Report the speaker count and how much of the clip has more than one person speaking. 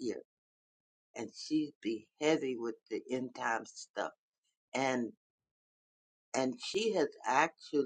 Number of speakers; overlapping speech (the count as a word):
one, no overlap